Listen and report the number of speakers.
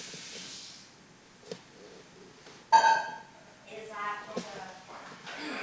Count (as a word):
one